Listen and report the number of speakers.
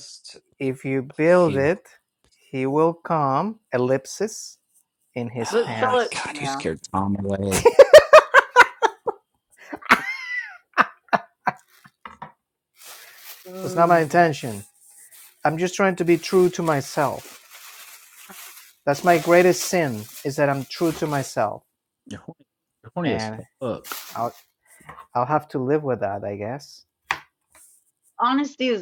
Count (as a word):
three